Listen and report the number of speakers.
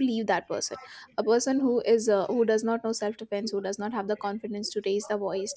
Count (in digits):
1